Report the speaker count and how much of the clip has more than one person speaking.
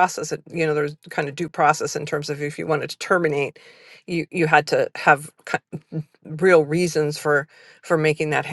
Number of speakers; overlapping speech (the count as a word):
one, no overlap